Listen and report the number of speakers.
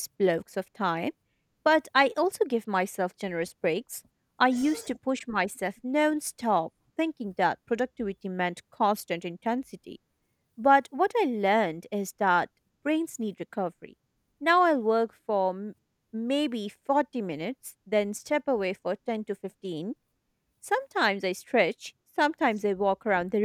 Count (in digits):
1